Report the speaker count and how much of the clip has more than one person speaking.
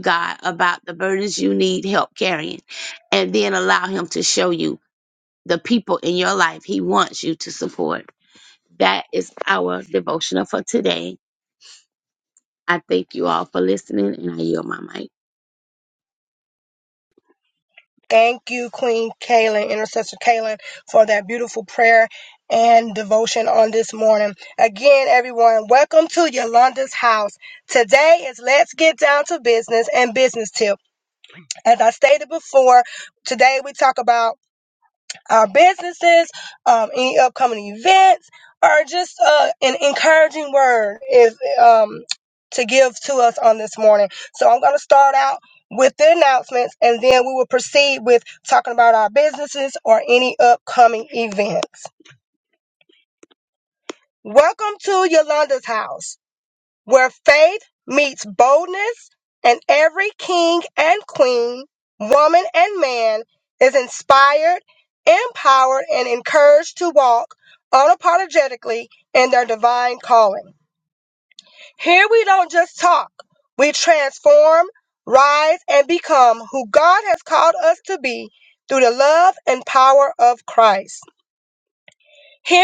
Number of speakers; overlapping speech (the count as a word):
two, no overlap